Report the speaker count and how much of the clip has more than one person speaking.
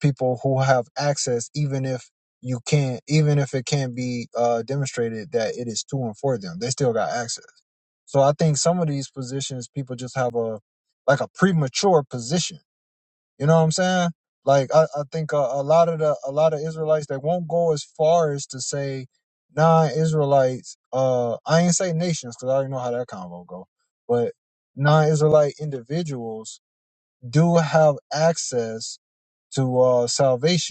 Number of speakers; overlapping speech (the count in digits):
1, no overlap